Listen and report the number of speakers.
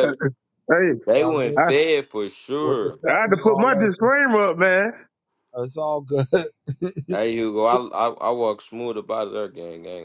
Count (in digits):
3